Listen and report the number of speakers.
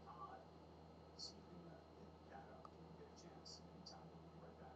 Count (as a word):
zero